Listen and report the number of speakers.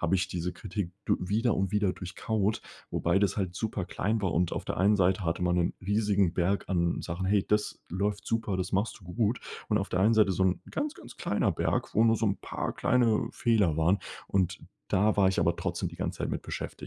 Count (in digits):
1